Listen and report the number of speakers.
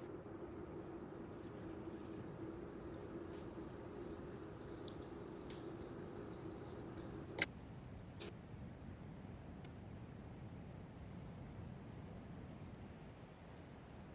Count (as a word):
zero